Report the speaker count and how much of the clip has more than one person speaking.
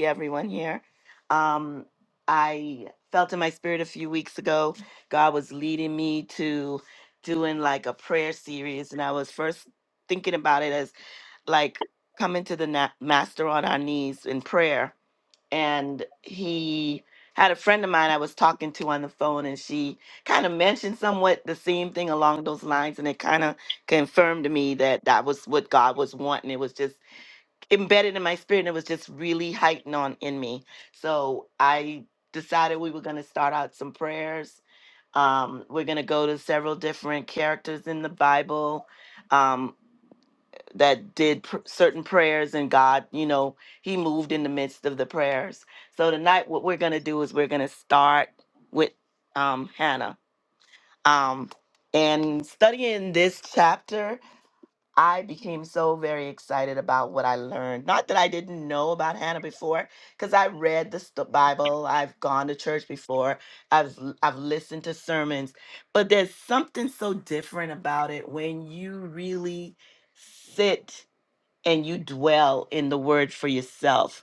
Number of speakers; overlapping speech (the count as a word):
one, no overlap